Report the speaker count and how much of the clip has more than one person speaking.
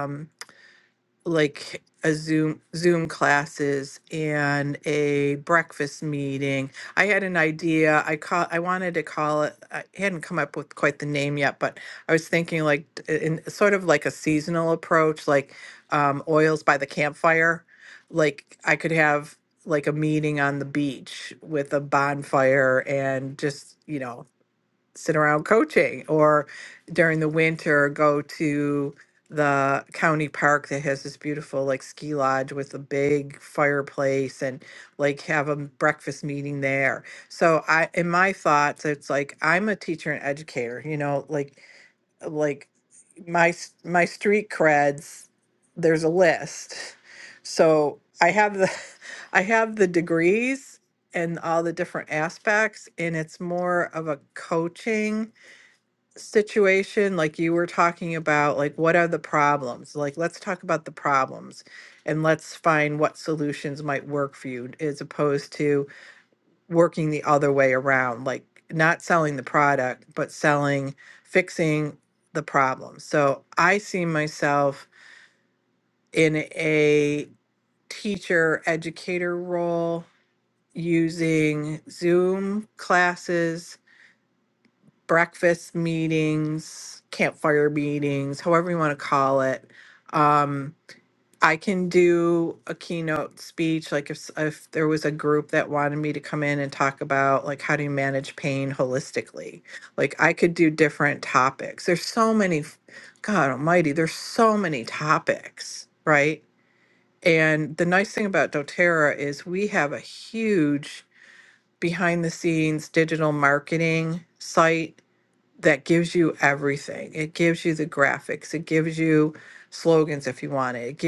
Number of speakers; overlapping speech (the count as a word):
one, no overlap